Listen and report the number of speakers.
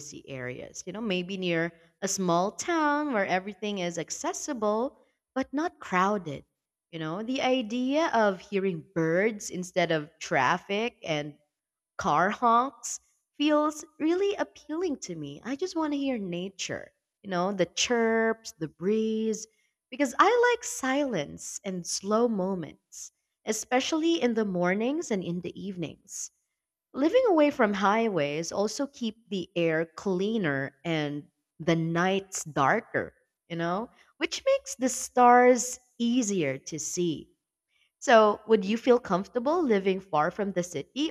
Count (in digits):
1